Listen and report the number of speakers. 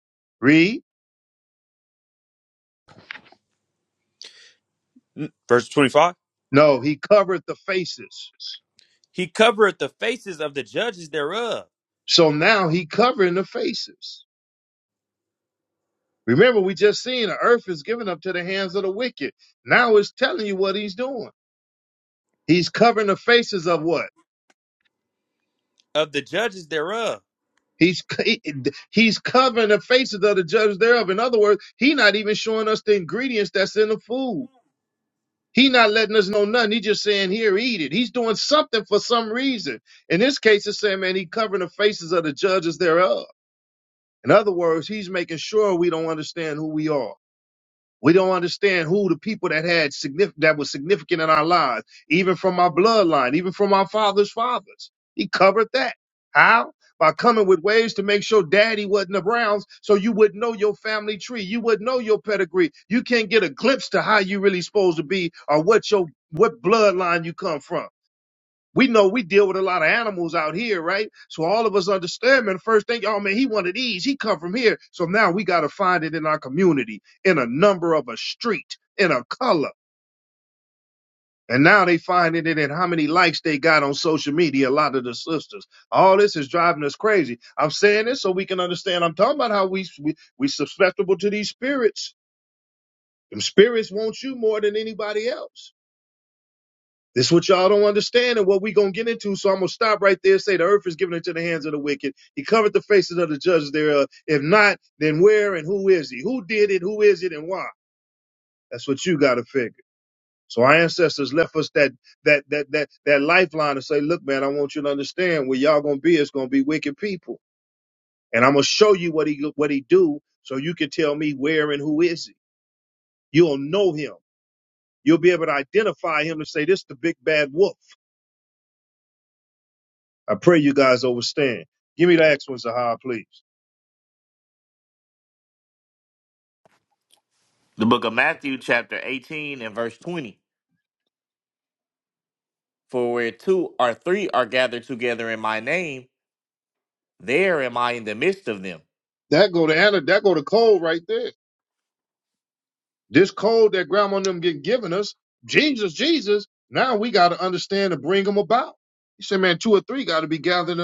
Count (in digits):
3